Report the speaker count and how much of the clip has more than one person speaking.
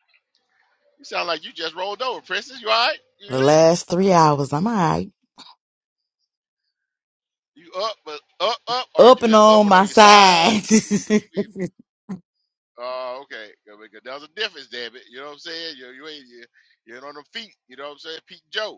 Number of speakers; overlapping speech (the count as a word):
two, about 10%